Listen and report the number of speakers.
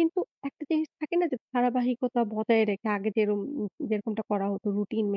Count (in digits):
1